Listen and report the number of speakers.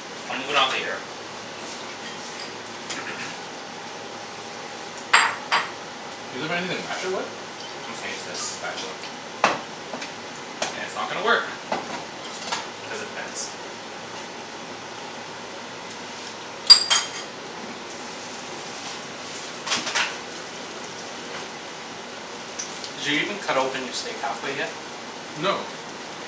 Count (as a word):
three